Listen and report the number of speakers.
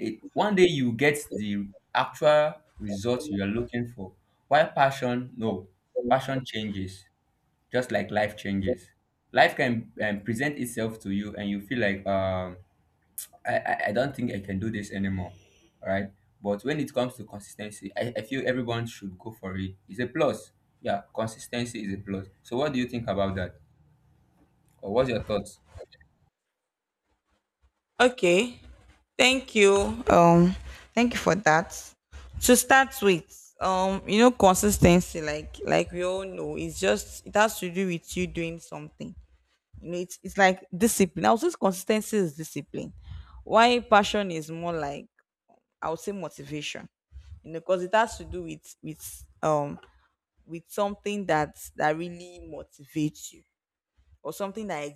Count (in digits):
2